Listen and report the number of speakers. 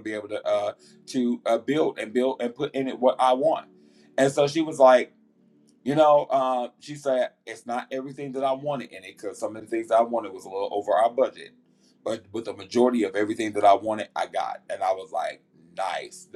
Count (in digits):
1